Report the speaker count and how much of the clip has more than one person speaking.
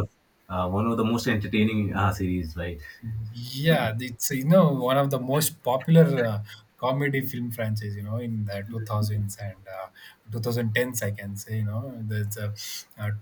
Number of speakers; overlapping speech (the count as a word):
two, no overlap